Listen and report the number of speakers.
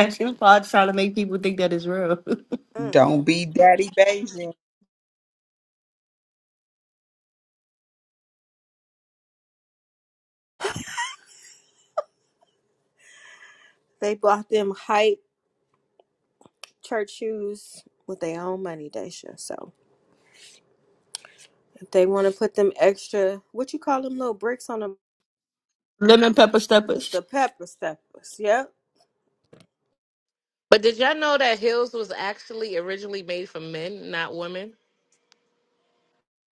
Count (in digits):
4